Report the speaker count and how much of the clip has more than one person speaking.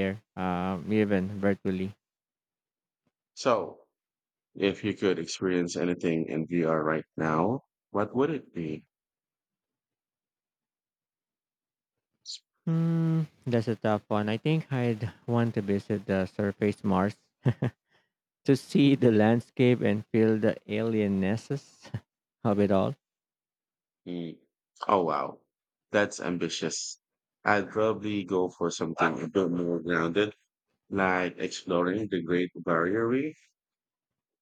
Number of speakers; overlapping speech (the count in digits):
2, no overlap